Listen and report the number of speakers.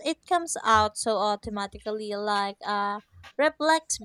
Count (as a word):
one